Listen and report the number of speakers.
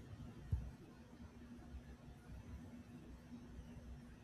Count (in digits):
0